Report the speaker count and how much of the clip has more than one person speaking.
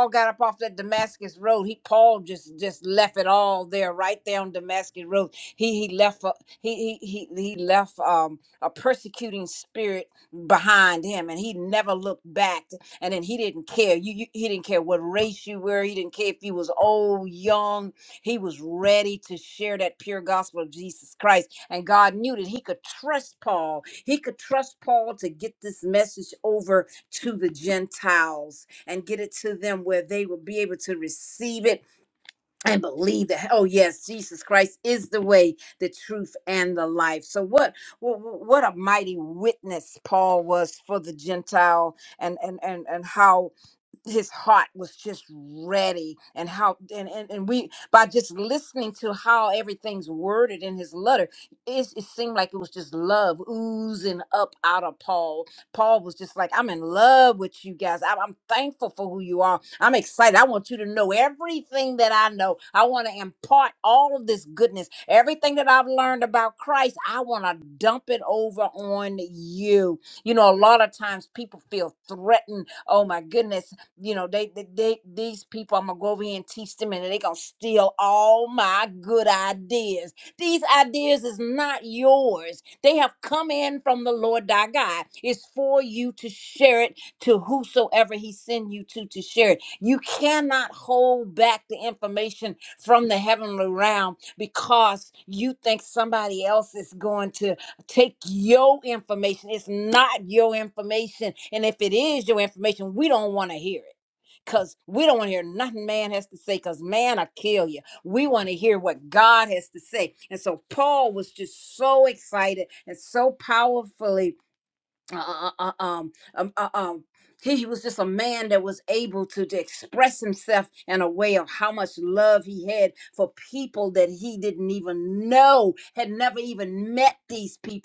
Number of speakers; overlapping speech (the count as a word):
one, no overlap